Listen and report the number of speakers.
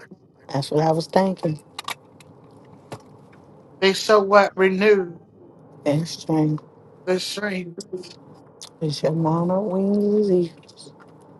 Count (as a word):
two